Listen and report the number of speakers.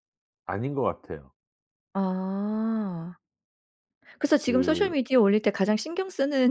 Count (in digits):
2